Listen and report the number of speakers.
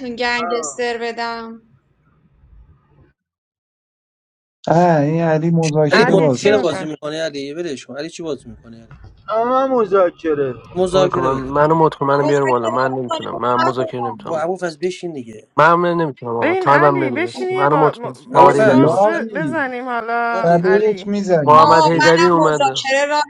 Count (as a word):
six